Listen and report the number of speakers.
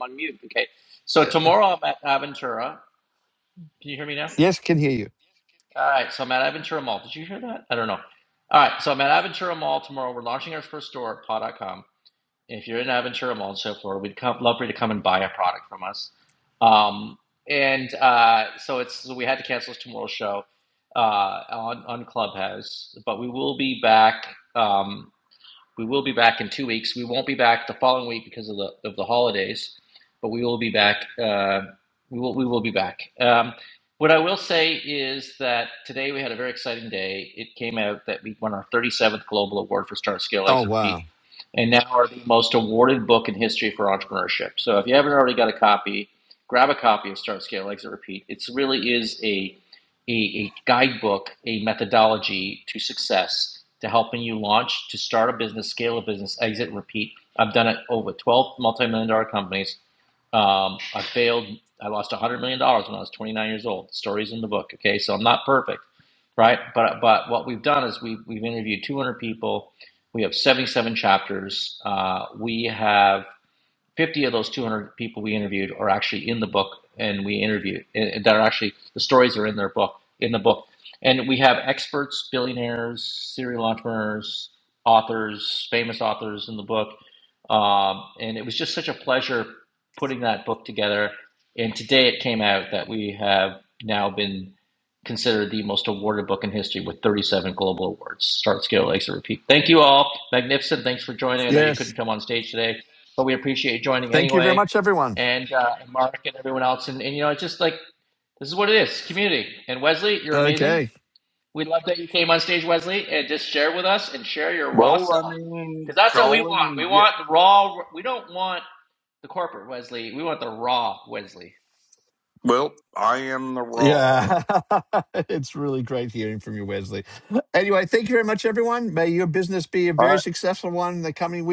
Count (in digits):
3